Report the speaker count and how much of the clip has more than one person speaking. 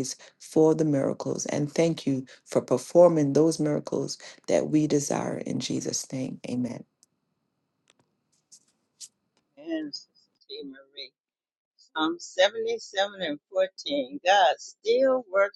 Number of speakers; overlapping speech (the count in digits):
2, no overlap